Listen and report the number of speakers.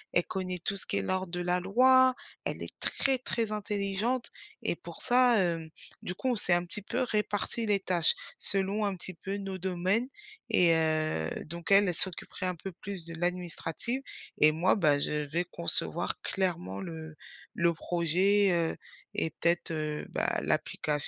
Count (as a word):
one